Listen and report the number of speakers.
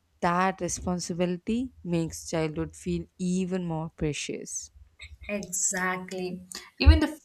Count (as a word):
two